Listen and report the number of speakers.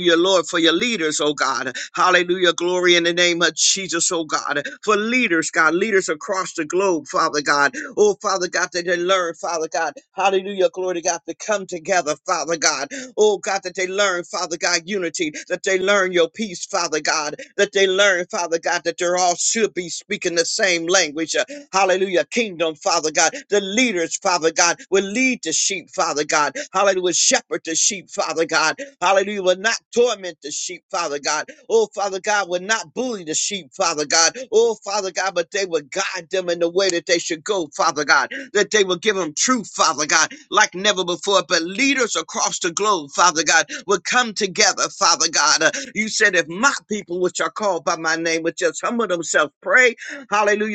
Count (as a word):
one